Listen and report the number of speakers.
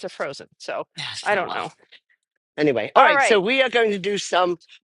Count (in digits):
2